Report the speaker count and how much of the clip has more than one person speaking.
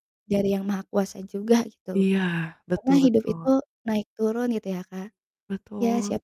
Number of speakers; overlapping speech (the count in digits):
2, about 18%